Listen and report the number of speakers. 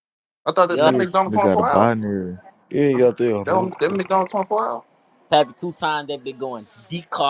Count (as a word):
four